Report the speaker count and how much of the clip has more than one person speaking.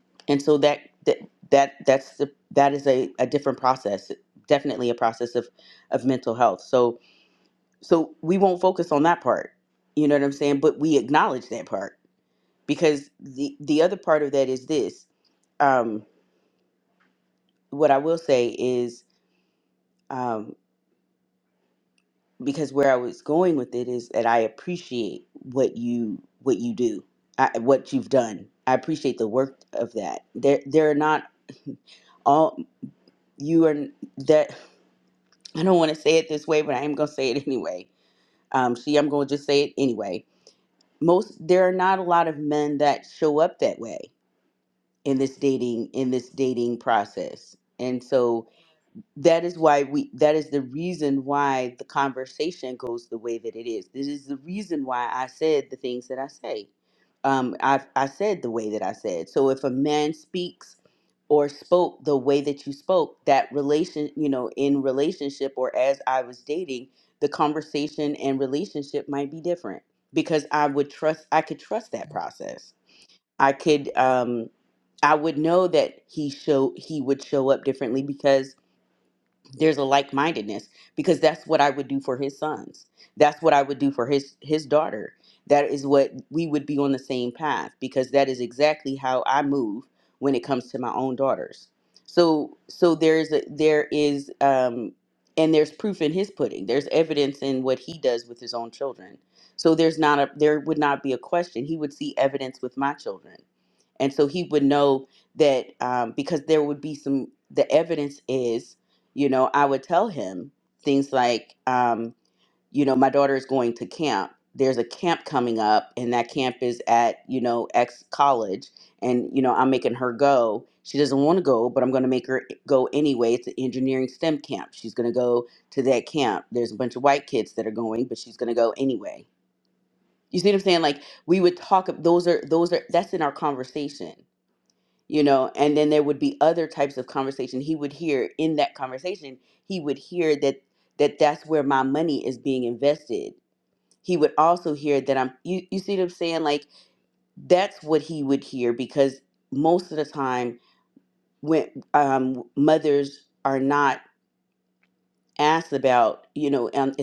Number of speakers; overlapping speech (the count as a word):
one, no overlap